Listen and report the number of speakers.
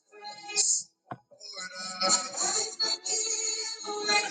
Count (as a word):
zero